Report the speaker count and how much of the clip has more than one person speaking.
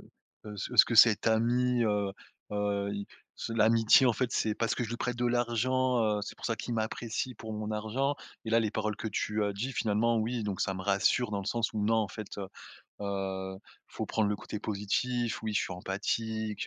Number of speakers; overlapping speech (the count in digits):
1, no overlap